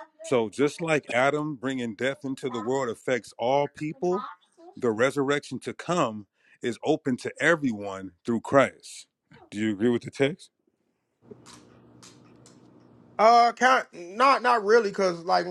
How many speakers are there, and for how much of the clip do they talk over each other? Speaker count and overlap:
2, no overlap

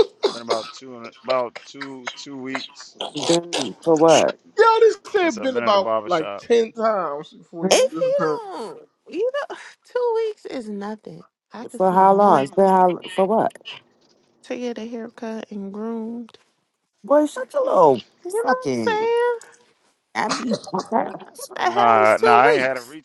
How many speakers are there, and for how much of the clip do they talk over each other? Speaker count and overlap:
4, about 19%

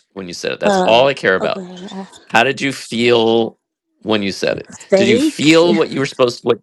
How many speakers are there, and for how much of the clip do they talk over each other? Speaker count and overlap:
2, about 21%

